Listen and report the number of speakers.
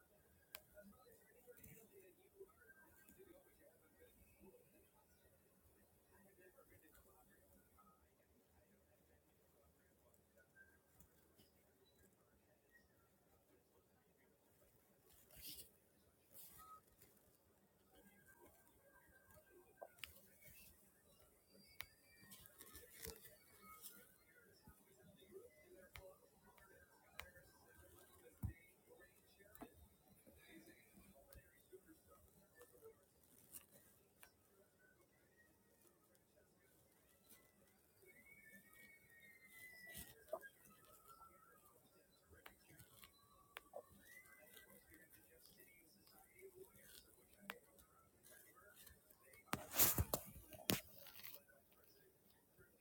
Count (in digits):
0